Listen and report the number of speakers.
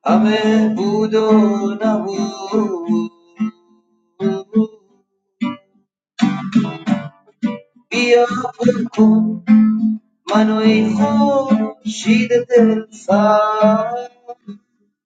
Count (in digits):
1